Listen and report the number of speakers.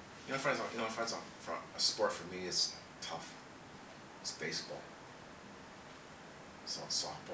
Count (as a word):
one